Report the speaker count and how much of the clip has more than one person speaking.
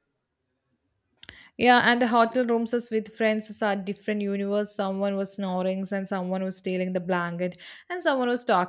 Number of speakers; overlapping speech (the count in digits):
1, no overlap